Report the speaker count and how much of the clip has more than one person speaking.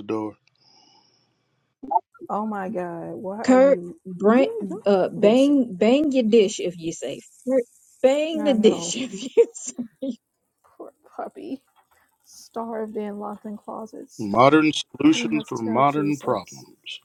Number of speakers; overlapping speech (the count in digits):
3, about 22%